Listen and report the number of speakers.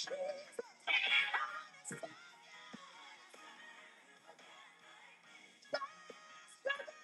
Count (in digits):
0